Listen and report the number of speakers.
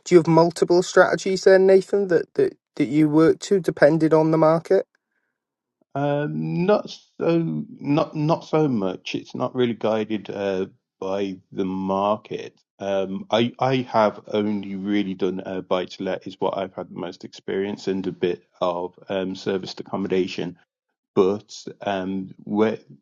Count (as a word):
two